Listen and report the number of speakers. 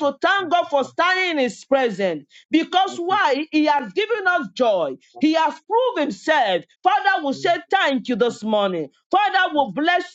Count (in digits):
1